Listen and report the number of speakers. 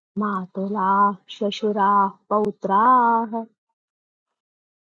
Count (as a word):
one